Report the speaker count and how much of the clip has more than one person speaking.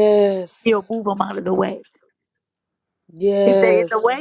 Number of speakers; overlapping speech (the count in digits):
2, about 11%